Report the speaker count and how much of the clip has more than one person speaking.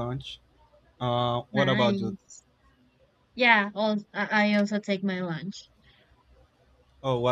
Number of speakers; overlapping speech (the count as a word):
two, about 8%